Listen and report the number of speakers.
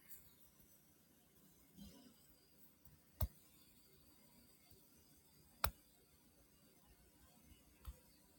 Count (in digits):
0